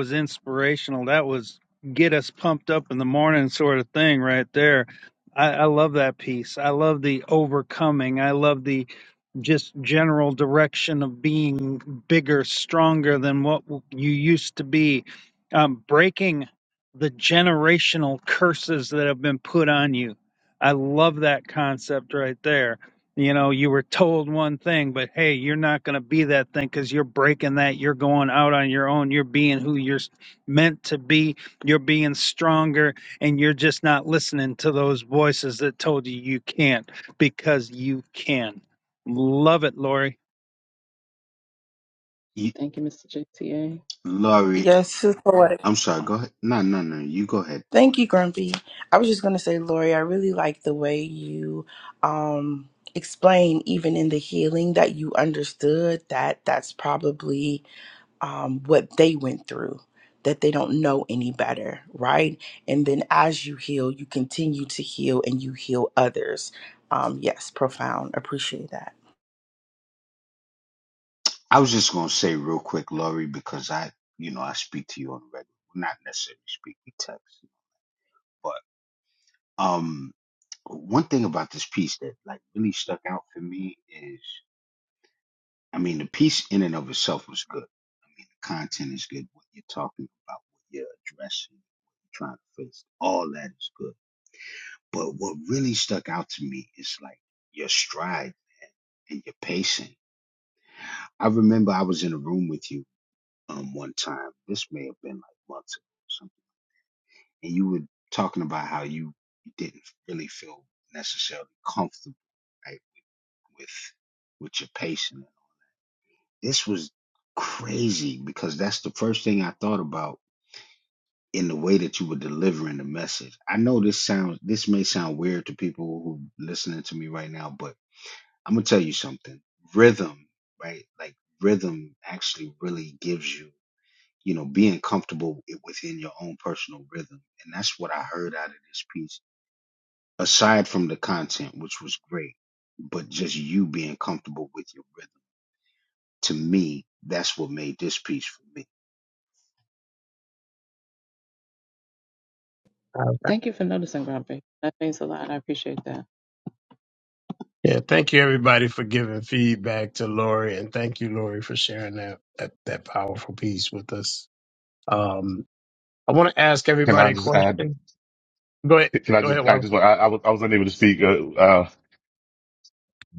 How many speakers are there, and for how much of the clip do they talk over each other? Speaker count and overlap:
six, about 1%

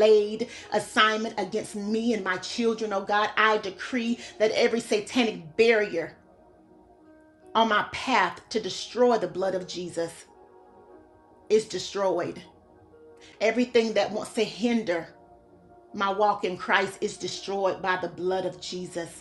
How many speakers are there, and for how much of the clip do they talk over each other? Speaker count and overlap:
one, no overlap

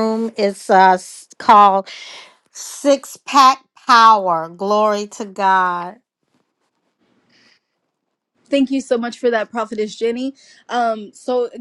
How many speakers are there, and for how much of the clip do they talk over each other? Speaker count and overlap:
two, no overlap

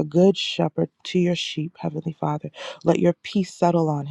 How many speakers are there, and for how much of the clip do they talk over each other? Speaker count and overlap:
one, no overlap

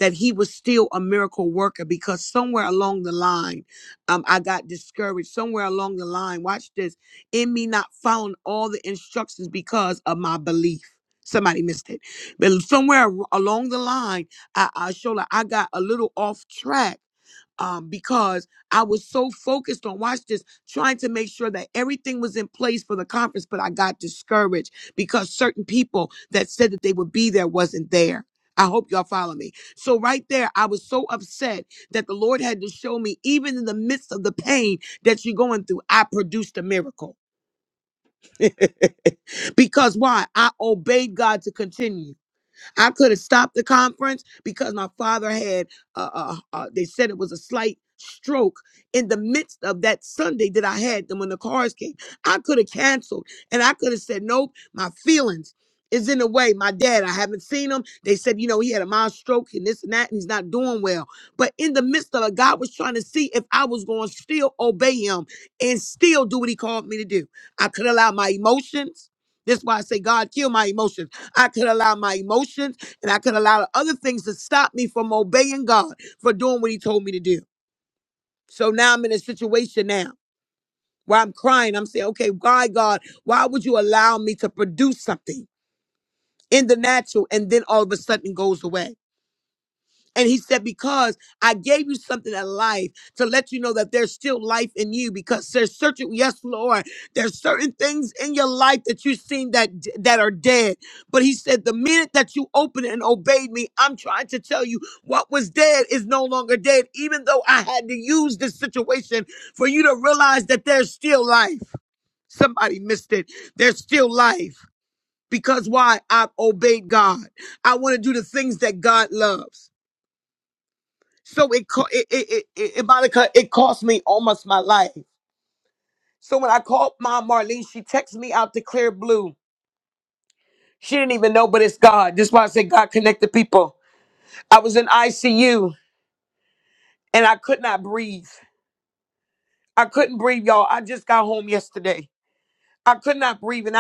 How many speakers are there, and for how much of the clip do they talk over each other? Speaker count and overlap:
one, no overlap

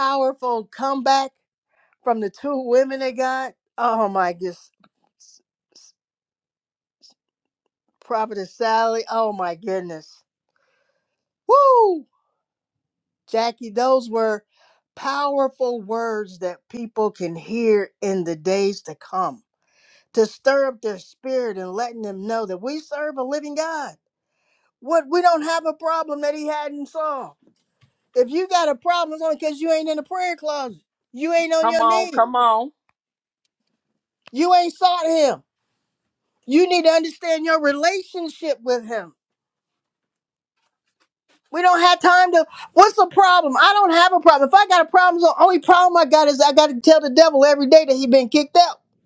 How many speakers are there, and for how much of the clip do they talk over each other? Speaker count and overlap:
two, about 1%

